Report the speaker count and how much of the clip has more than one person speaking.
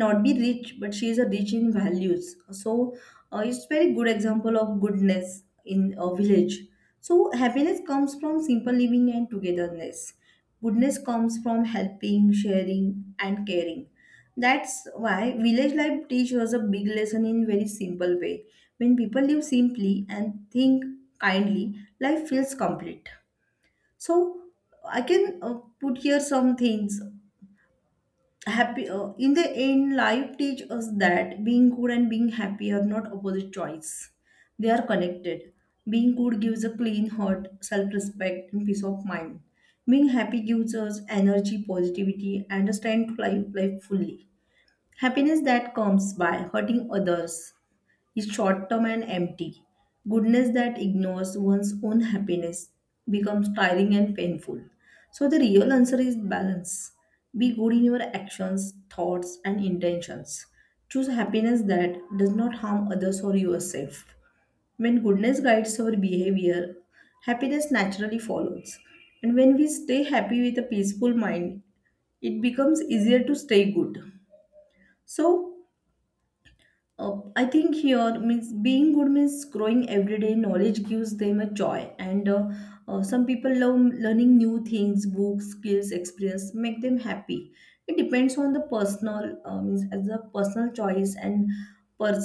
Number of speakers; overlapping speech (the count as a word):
one, no overlap